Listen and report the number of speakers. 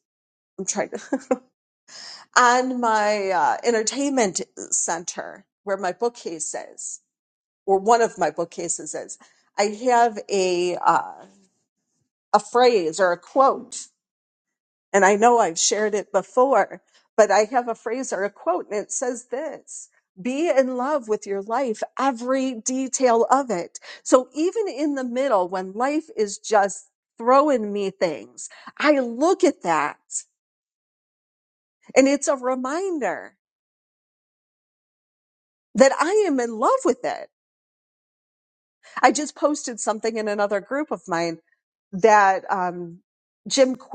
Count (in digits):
1